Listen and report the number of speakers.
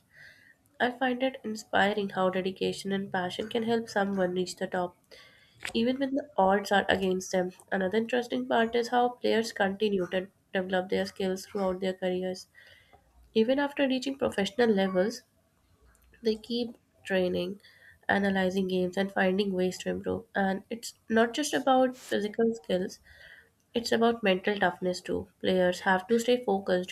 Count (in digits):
1